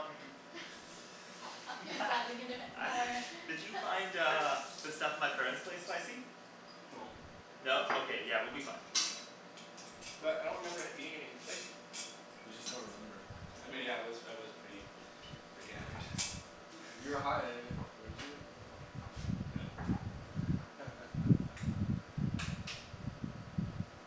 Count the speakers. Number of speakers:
four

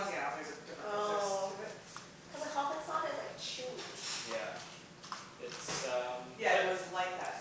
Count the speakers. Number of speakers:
three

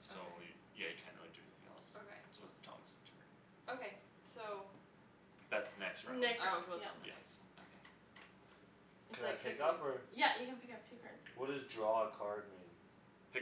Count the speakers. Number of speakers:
four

